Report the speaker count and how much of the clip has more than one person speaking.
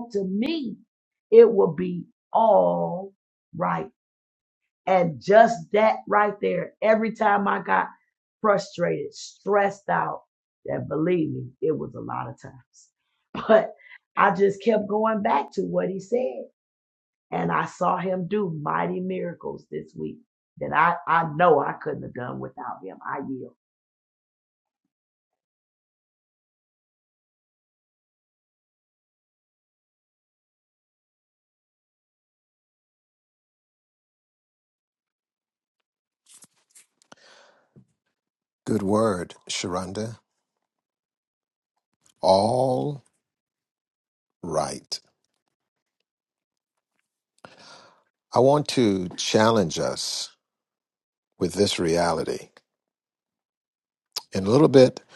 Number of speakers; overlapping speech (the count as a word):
two, no overlap